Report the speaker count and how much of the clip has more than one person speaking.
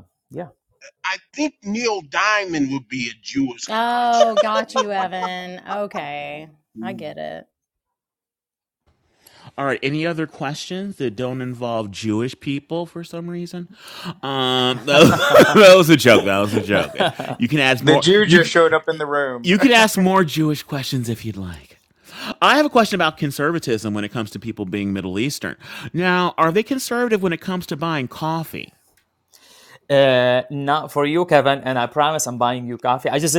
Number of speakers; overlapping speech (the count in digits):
5, about 6%